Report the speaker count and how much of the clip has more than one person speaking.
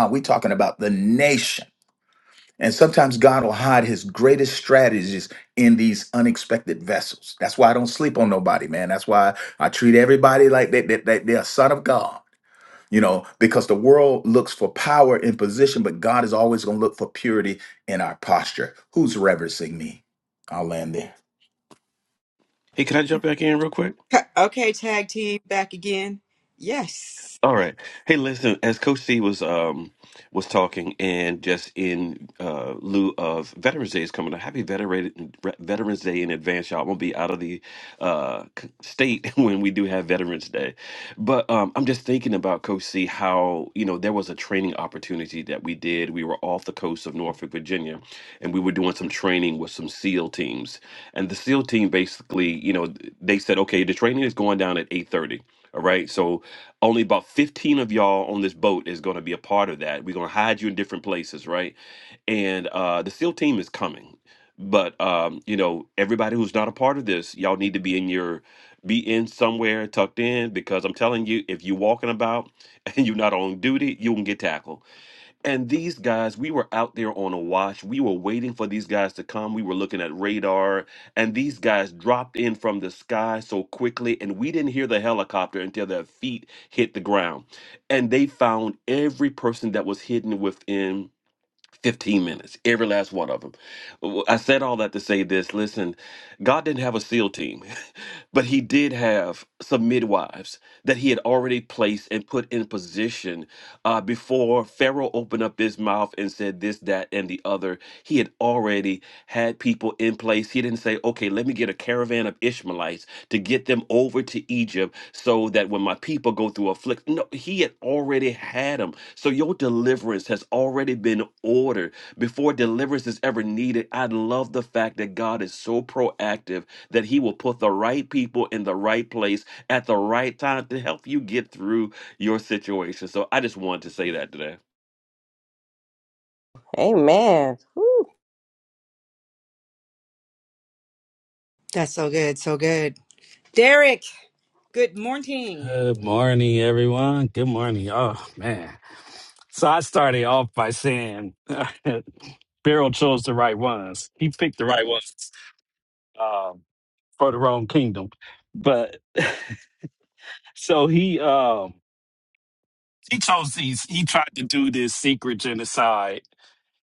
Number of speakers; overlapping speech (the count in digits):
5, under 1%